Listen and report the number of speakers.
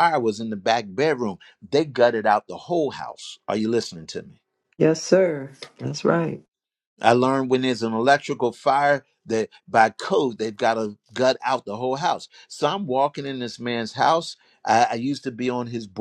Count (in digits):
2